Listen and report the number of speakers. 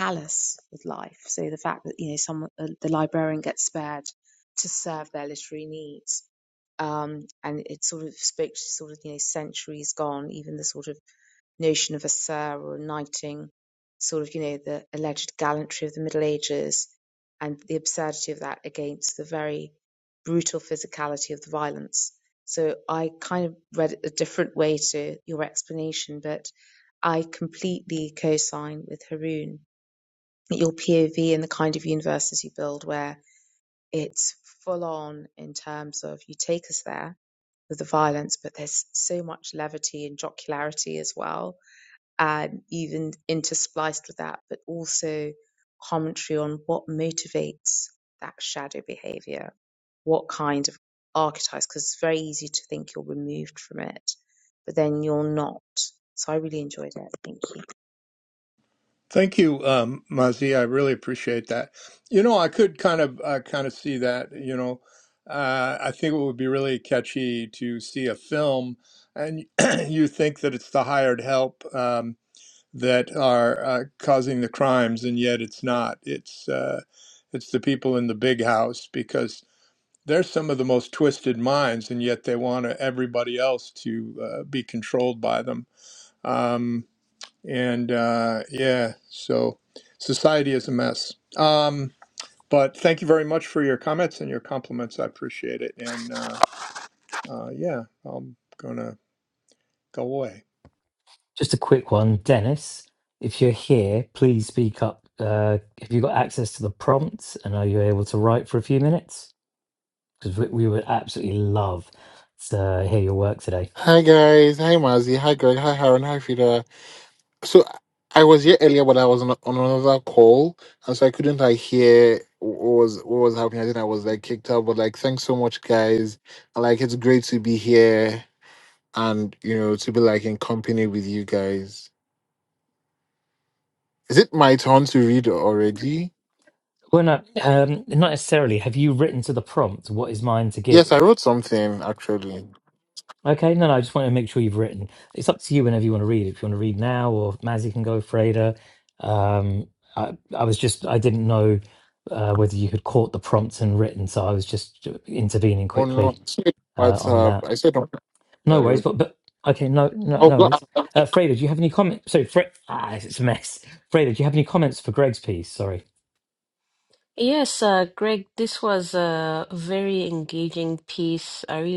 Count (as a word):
five